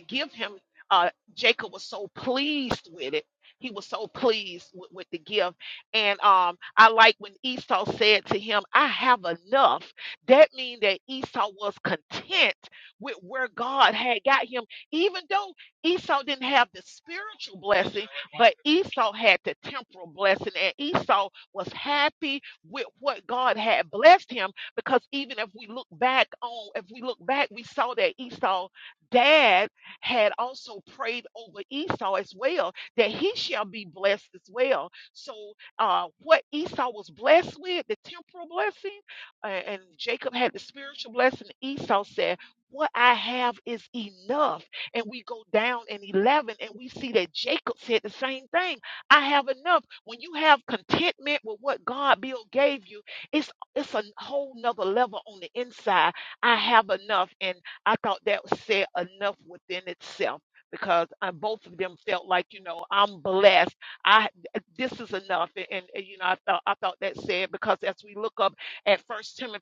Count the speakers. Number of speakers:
1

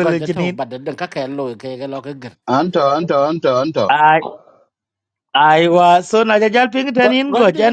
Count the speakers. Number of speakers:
3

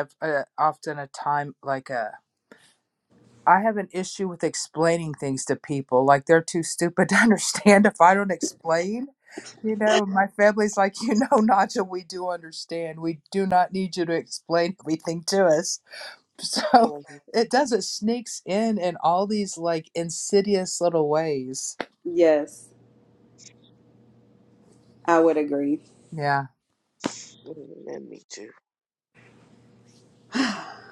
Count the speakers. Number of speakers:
3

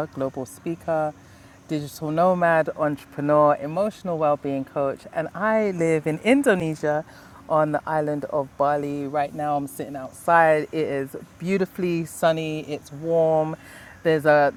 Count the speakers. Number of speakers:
1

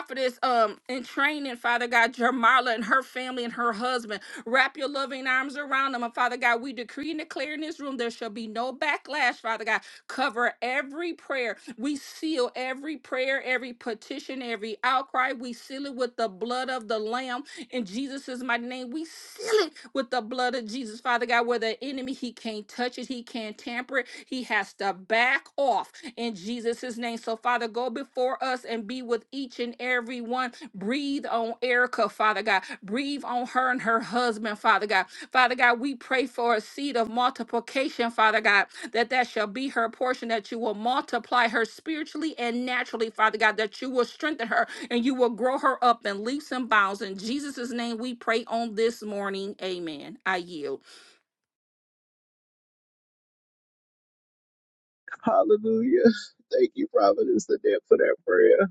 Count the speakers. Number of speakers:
2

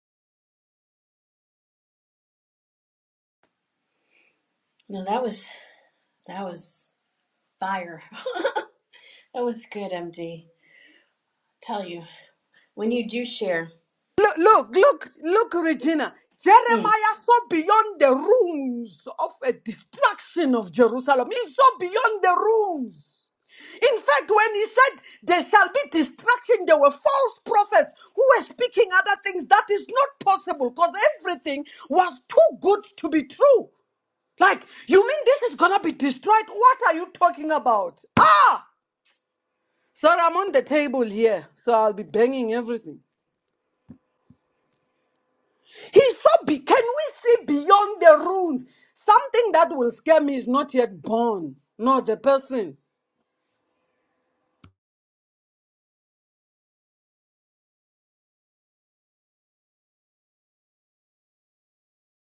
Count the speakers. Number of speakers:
2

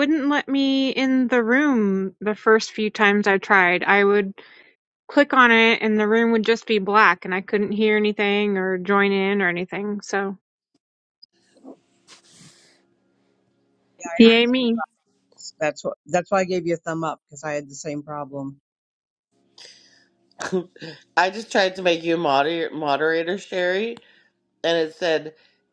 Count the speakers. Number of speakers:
3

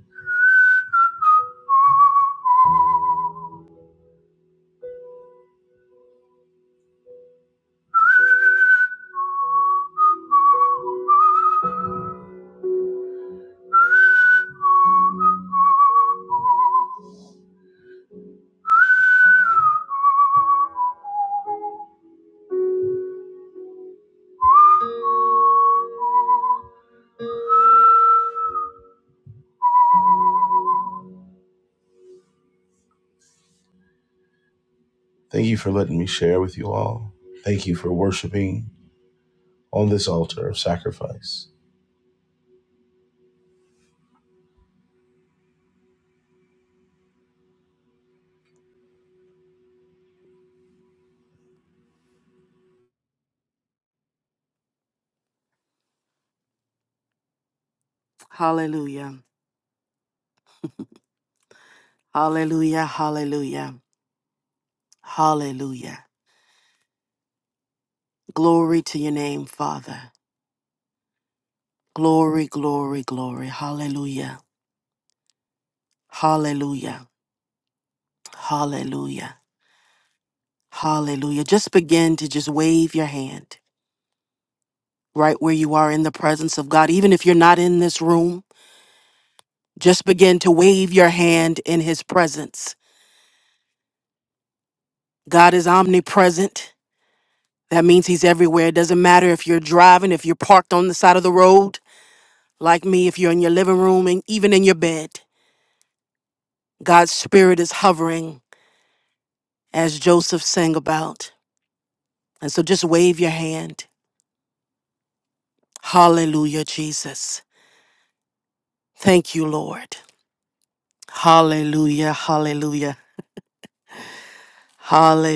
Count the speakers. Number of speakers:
2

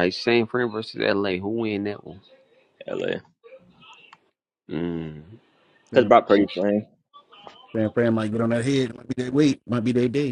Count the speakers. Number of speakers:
3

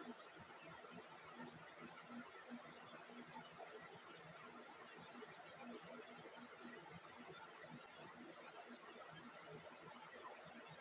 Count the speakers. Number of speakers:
0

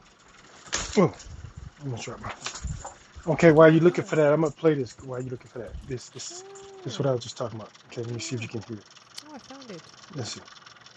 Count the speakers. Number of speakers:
2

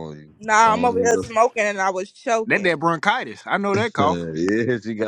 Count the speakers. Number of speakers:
3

